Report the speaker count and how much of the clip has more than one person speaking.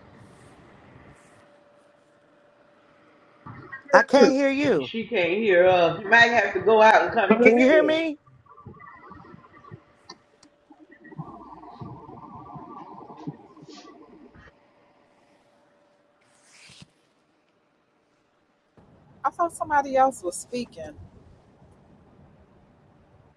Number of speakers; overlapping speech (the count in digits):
3, about 3%